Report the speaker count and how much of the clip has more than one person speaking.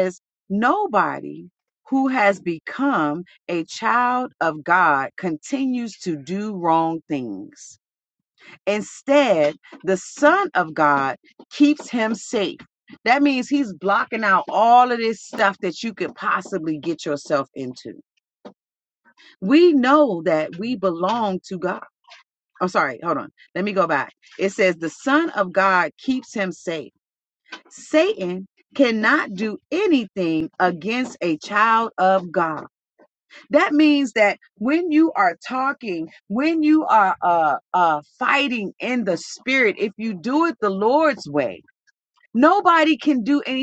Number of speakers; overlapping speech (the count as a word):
one, no overlap